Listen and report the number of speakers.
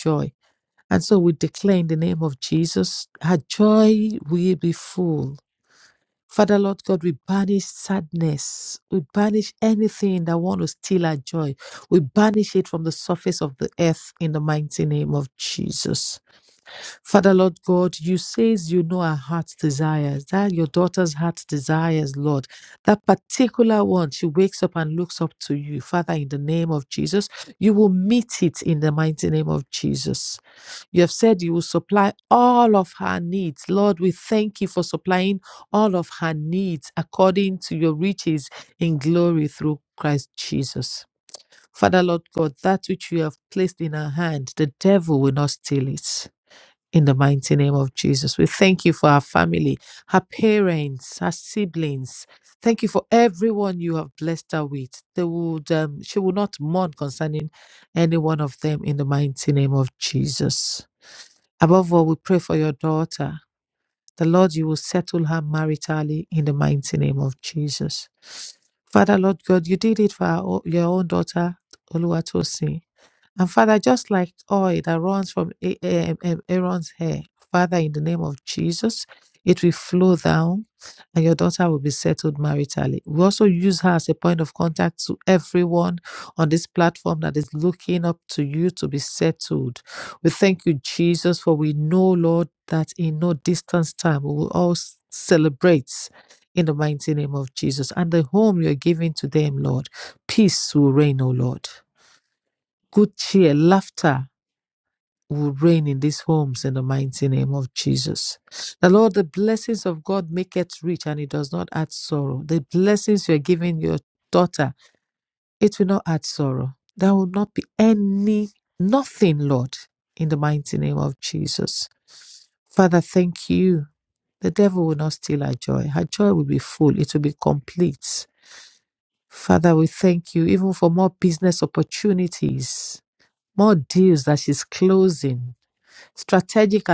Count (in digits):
1